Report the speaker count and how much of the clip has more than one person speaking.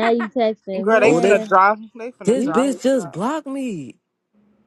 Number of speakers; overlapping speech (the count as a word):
three, about 34%